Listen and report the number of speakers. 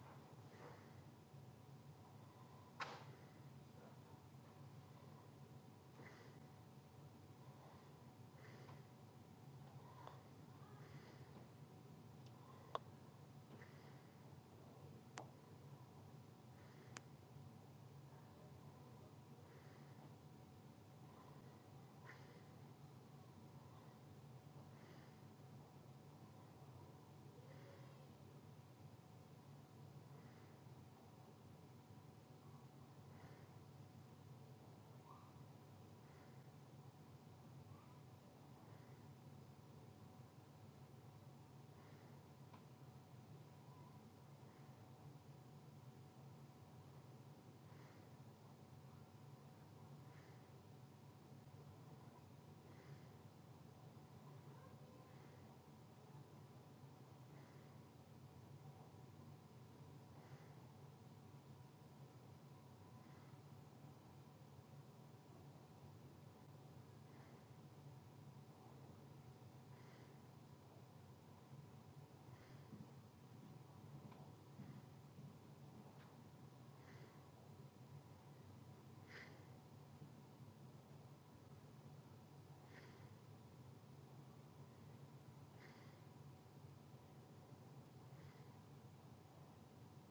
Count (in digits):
0